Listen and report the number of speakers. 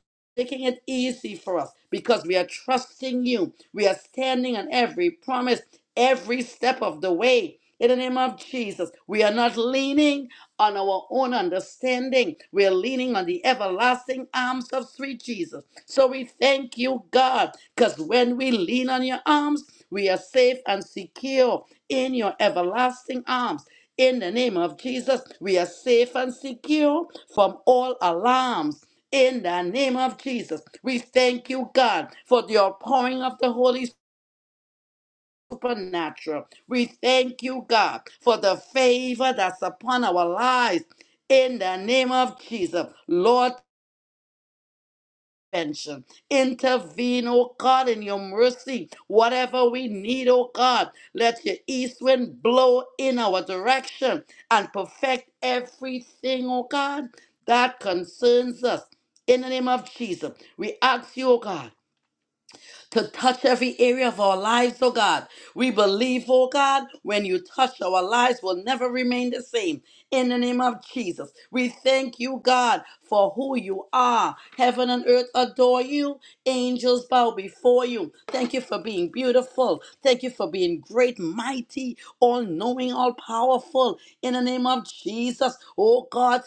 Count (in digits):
1